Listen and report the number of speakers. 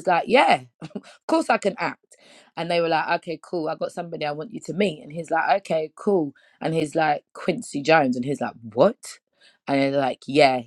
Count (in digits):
1